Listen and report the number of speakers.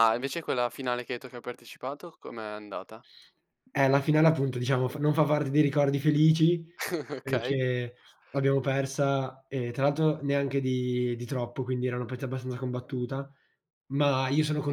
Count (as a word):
two